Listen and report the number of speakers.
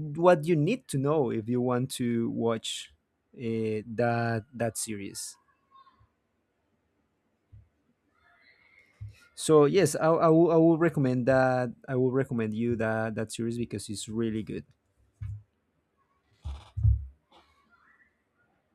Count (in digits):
1